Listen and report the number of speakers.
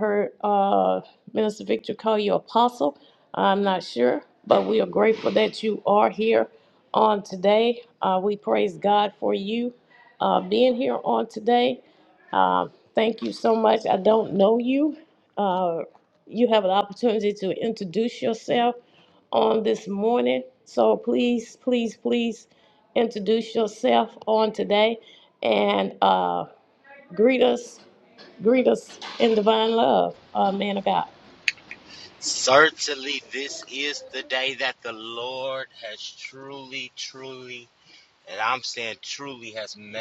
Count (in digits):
2